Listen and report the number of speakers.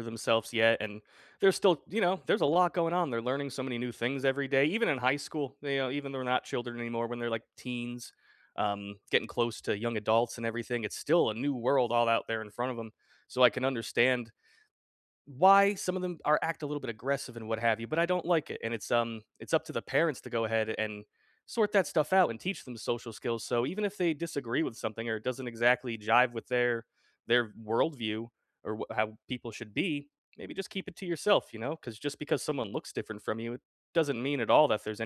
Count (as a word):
one